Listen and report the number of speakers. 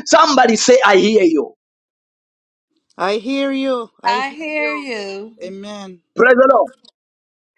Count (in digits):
3